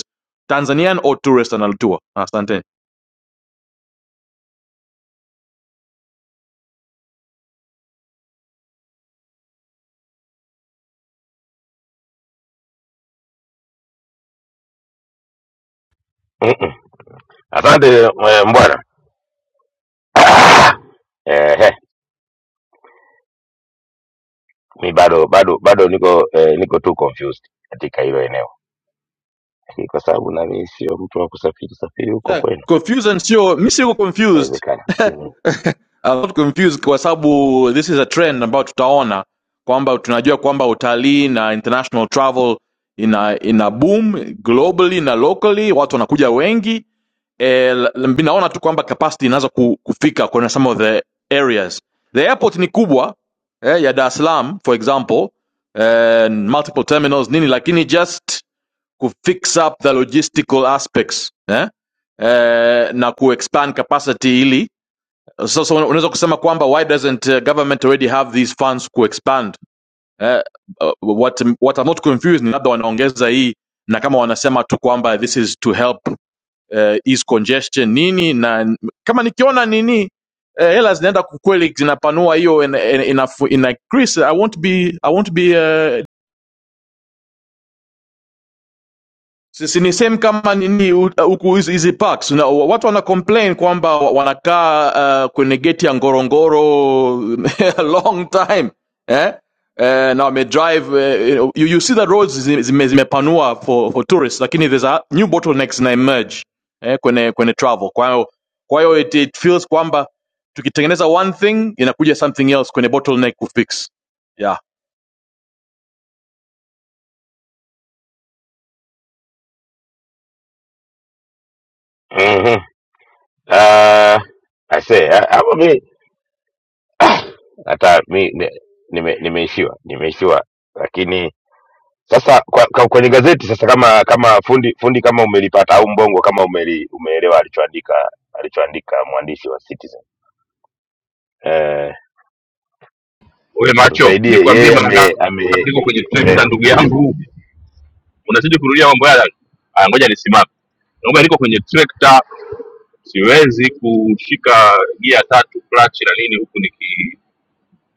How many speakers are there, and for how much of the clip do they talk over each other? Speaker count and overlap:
three, about 1%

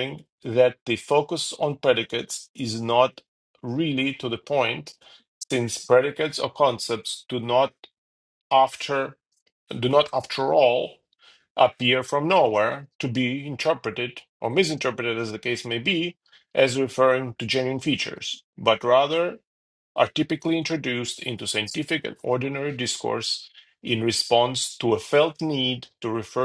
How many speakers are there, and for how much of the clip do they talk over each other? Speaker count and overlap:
one, no overlap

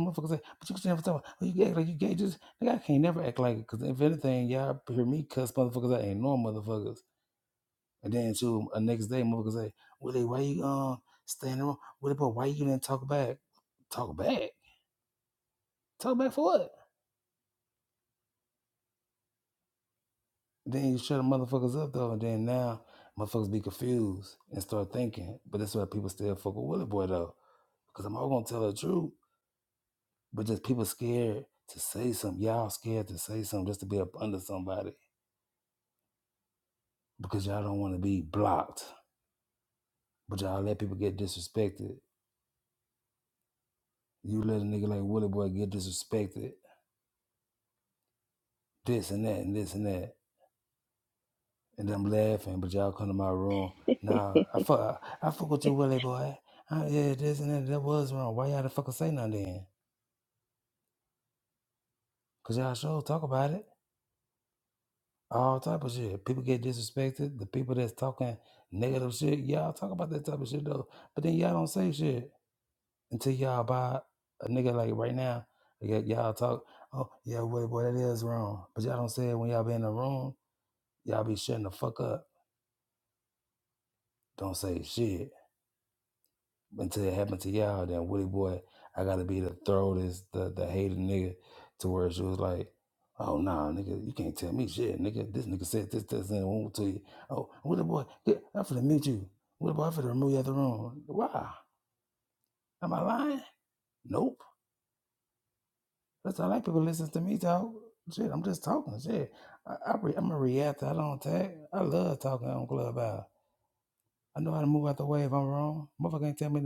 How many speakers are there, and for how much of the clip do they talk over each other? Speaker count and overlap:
one, no overlap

